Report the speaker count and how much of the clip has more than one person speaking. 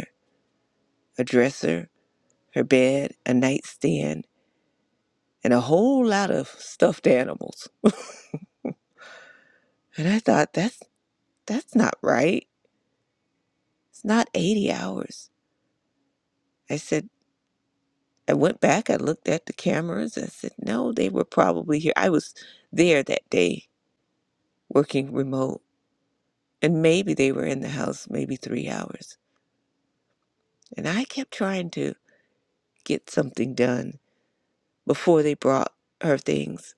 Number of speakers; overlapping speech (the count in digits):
1, no overlap